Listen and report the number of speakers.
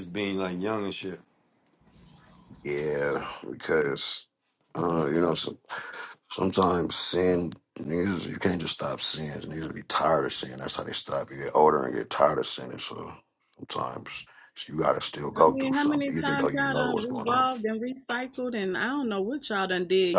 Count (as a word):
three